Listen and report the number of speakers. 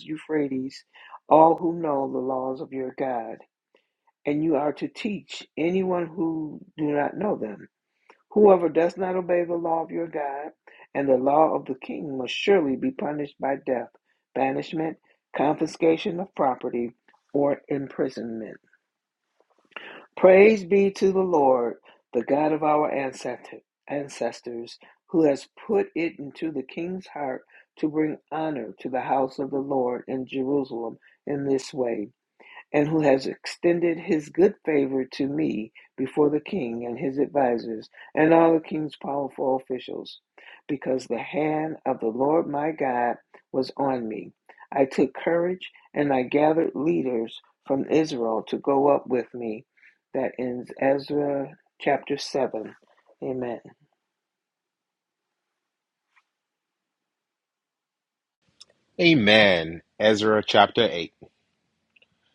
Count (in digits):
2